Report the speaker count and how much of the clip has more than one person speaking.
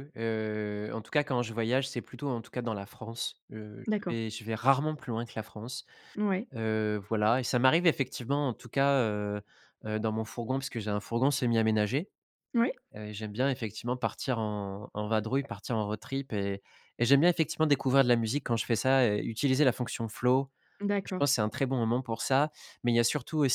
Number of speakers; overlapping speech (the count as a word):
two, about 2%